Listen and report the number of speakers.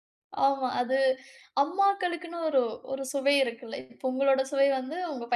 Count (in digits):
1